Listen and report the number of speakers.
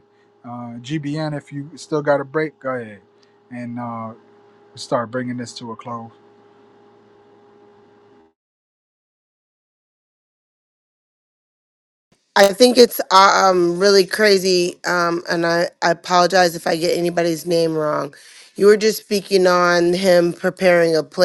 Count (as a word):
two